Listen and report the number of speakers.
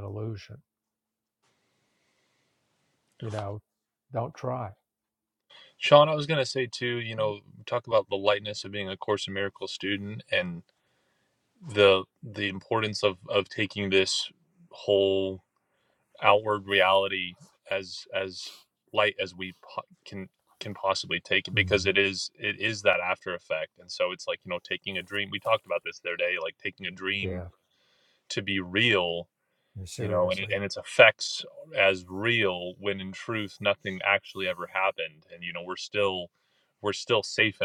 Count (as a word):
two